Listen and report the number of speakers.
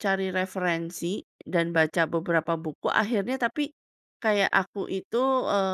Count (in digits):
1